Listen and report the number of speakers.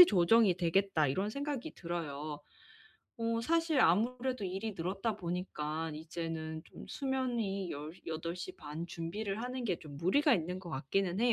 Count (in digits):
1